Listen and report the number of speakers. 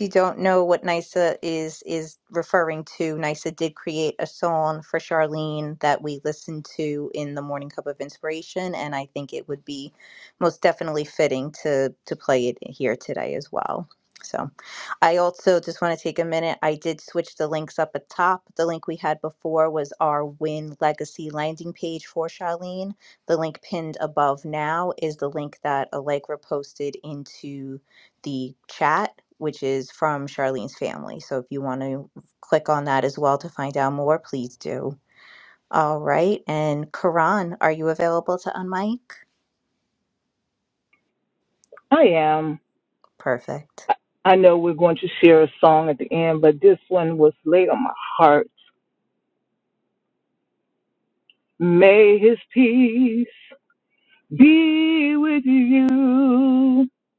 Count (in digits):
2